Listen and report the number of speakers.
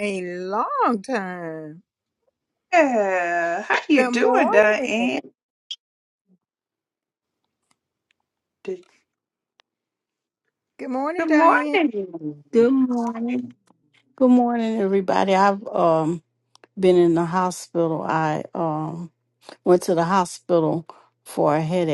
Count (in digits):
3